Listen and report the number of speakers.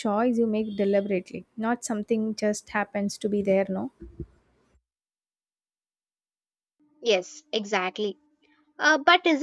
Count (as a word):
two